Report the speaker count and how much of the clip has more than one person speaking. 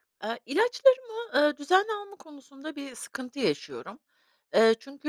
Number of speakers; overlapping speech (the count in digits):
1, no overlap